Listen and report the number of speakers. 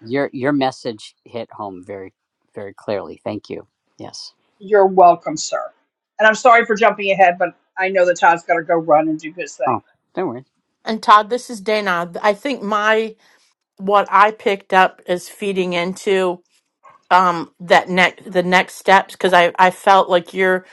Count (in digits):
3